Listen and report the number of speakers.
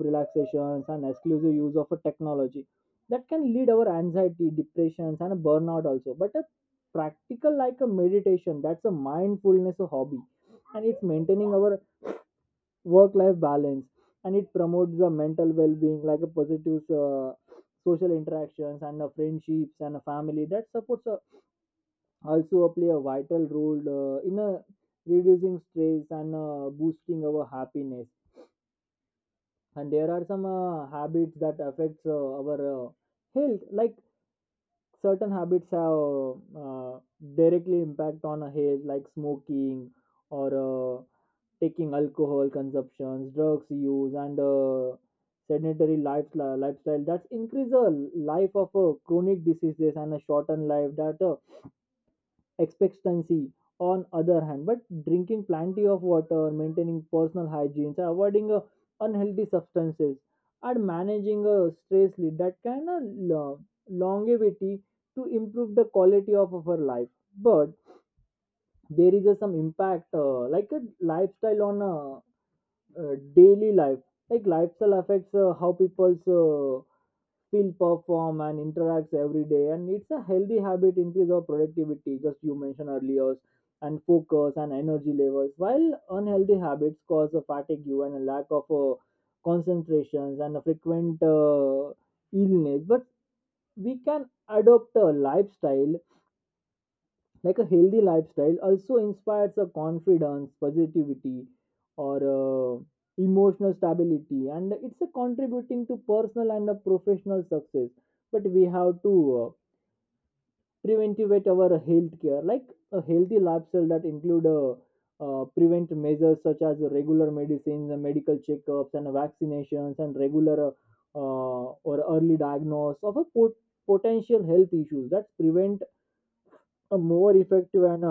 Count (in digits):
1